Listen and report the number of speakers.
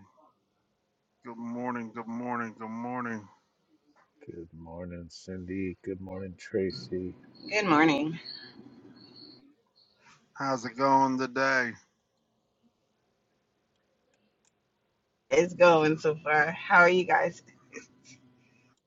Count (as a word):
three